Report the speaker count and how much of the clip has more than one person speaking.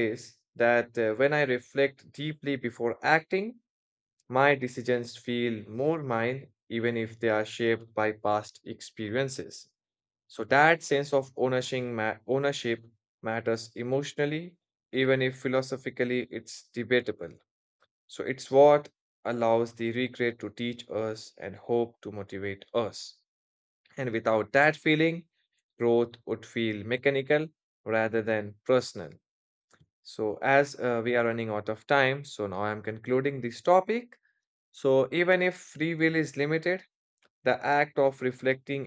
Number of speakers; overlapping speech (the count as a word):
one, no overlap